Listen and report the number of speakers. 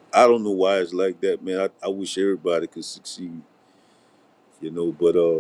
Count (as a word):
one